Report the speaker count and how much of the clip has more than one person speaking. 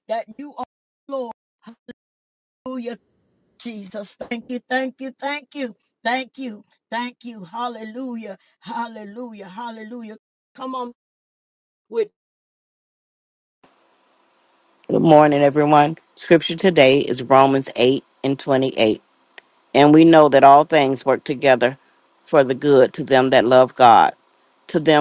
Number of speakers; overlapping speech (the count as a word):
two, no overlap